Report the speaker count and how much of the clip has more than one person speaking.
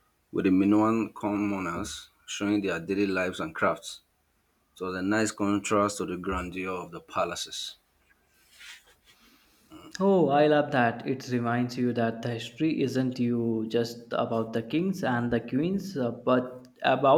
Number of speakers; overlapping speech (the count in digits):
2, no overlap